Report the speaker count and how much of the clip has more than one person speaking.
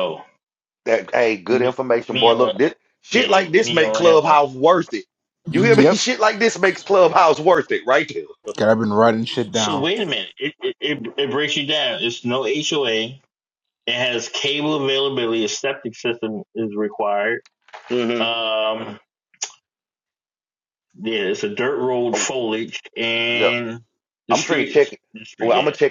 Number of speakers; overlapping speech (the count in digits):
3, about 16%